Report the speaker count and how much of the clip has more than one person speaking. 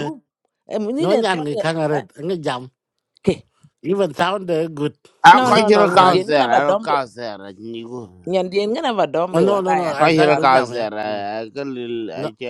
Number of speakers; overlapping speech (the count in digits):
3, about 33%